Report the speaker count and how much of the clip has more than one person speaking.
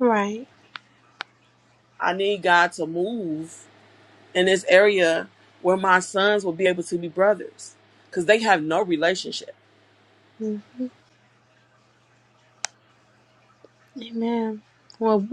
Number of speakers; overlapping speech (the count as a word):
two, no overlap